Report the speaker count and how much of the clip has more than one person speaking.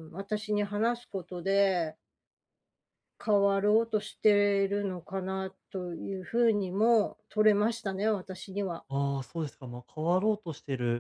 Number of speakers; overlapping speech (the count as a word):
two, no overlap